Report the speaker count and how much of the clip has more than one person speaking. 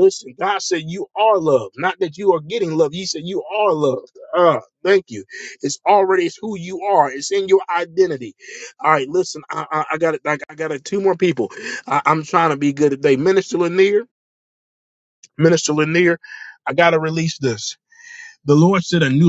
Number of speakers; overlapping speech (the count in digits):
1, no overlap